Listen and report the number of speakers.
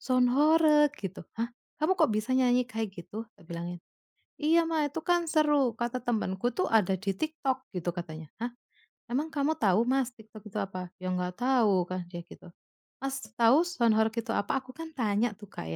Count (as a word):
one